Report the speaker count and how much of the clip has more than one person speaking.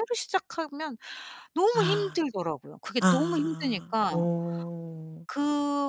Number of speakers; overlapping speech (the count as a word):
two, about 29%